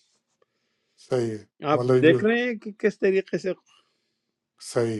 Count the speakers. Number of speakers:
two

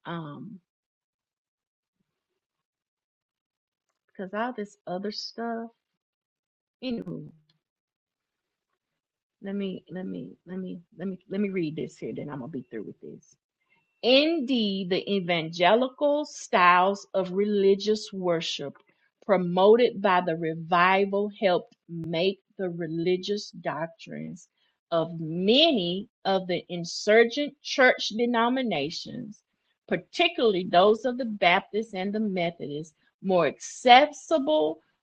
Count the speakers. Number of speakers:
one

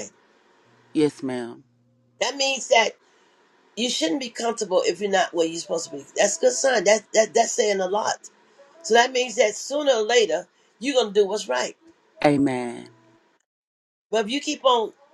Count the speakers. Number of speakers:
two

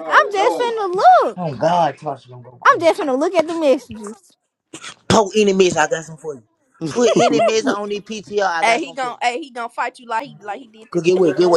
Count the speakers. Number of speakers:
three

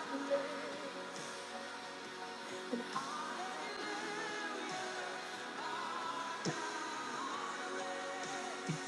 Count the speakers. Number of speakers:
zero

